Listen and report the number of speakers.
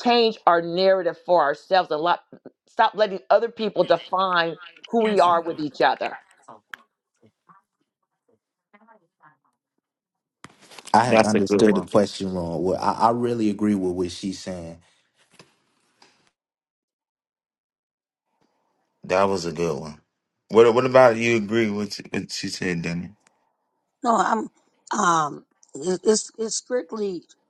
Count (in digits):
4